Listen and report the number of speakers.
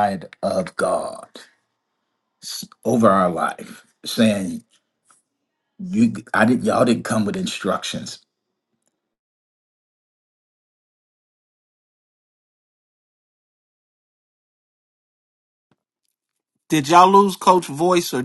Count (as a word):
two